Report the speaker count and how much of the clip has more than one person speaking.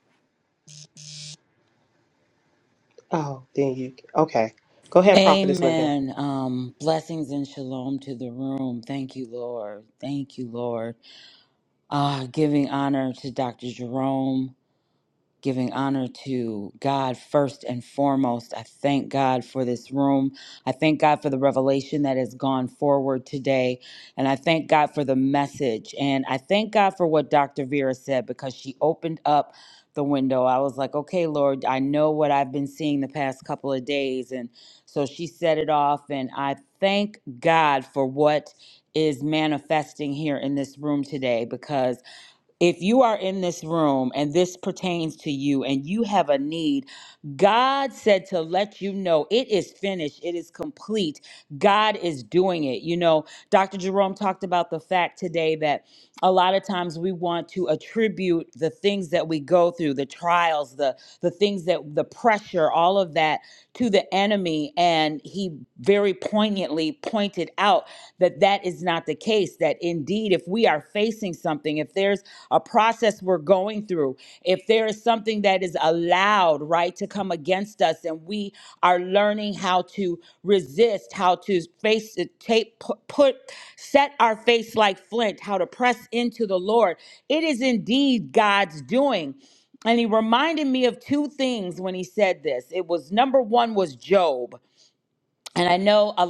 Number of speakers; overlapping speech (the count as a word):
two, about 1%